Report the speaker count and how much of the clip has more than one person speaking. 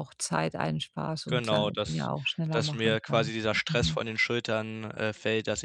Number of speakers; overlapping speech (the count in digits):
2, about 32%